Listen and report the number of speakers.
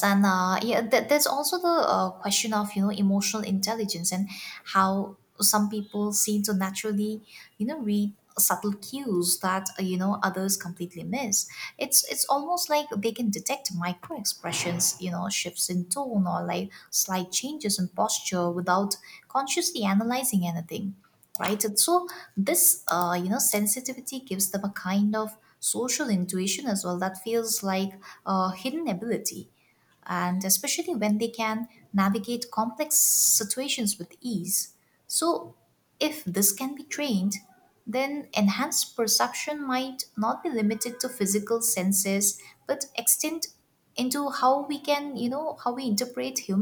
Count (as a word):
one